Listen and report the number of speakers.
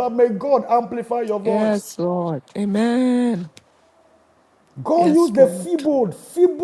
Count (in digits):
2